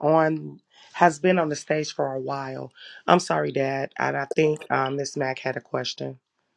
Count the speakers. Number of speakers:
1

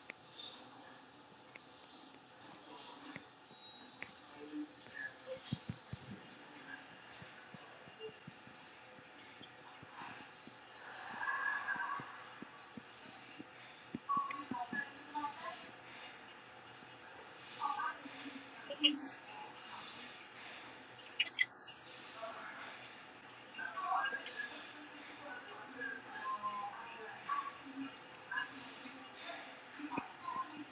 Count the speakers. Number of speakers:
0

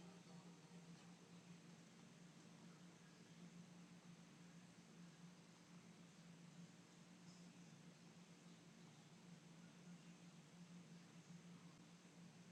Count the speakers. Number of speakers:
0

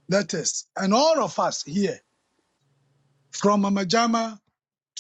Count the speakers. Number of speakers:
1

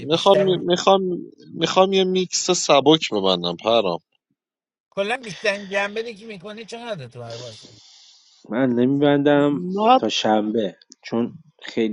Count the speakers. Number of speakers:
3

